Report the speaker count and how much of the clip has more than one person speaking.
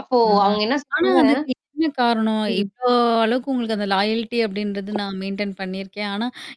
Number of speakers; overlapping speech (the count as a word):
two, about 10%